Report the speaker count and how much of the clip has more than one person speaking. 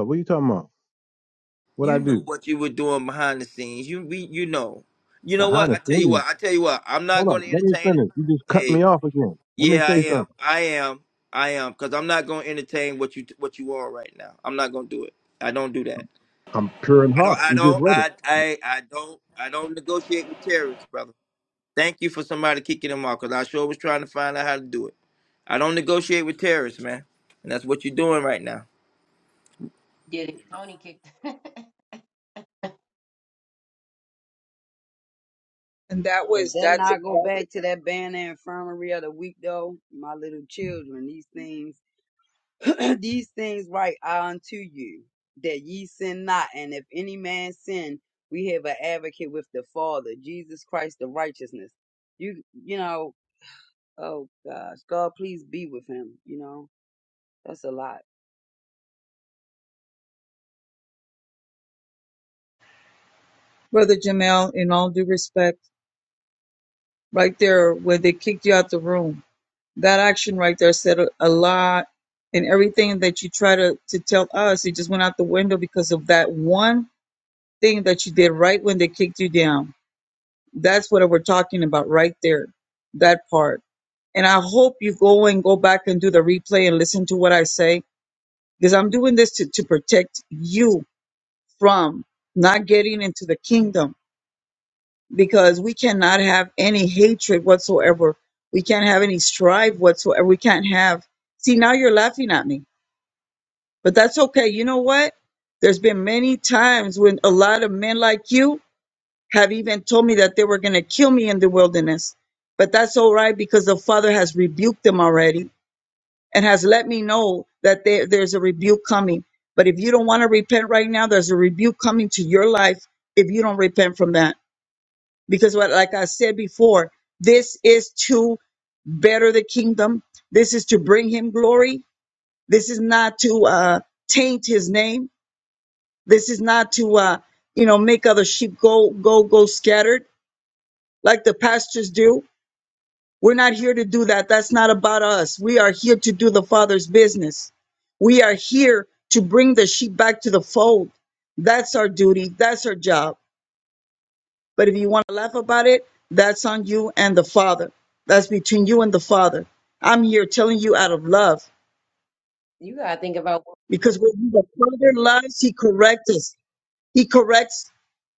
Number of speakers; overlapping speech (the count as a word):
five, about 3%